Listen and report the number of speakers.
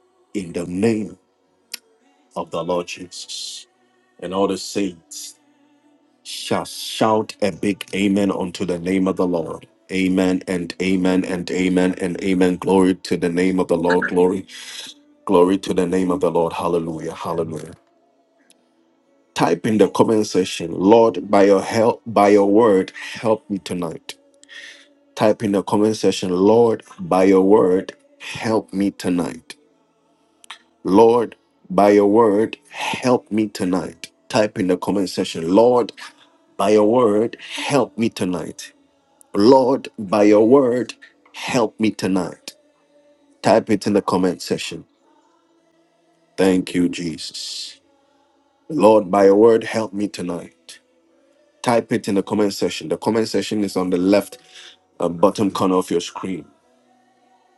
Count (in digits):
1